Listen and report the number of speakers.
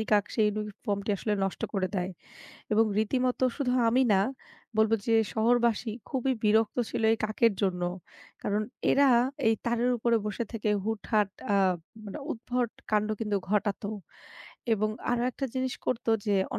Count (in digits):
1